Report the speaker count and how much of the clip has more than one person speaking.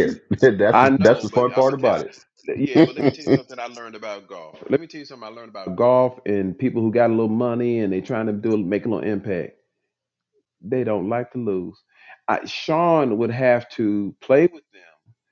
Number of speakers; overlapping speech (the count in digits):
2, about 8%